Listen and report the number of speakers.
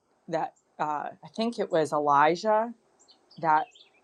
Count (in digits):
1